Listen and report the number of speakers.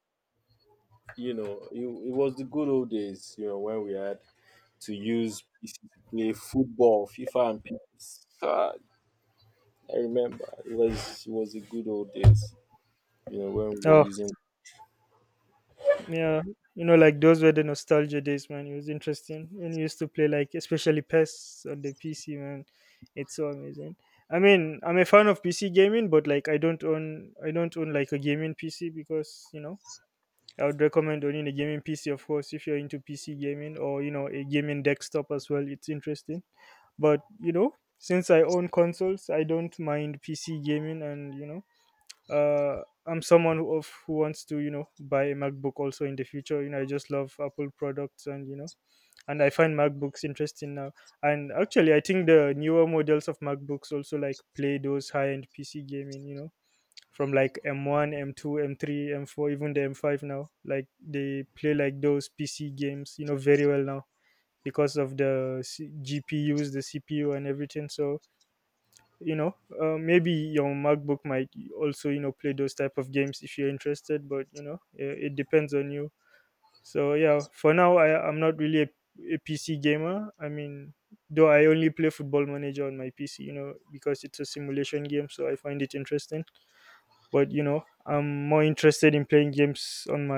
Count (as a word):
two